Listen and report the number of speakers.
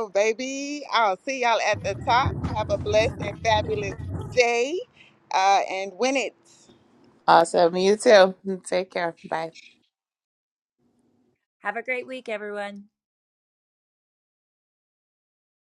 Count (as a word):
three